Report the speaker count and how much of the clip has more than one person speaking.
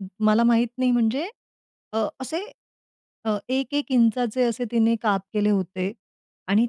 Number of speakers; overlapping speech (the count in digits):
1, no overlap